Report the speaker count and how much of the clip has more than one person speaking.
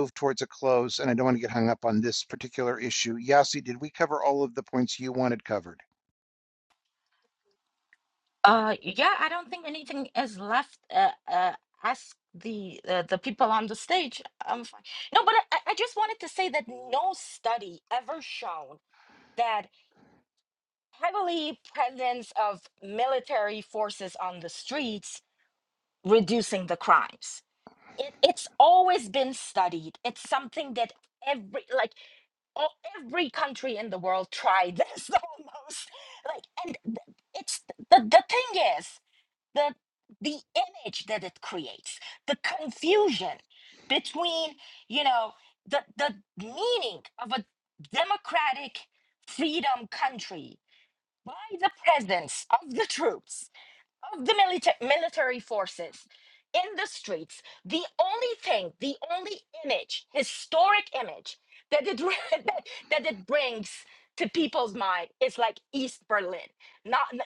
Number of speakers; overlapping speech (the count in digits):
2, no overlap